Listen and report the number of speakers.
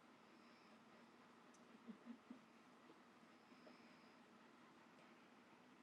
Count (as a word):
zero